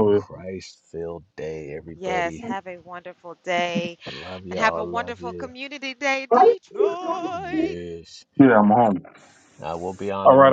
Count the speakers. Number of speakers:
3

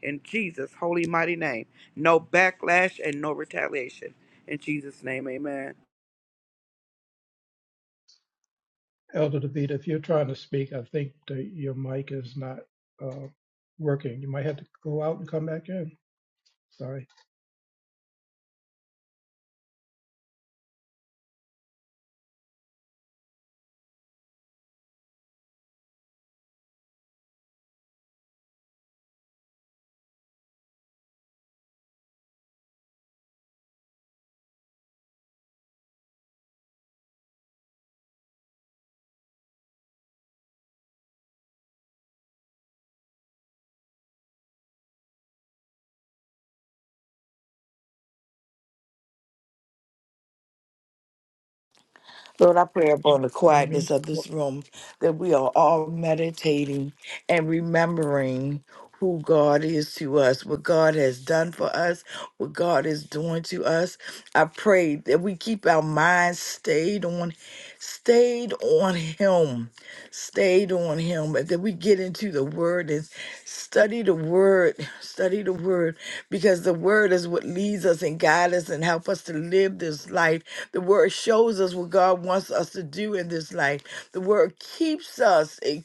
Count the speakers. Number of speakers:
3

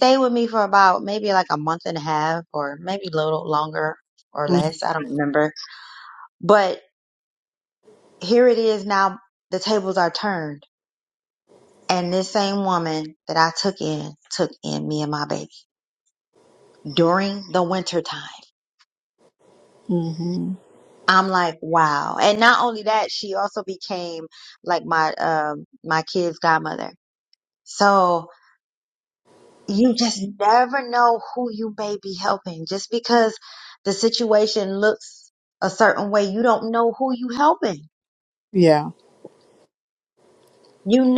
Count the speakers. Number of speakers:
2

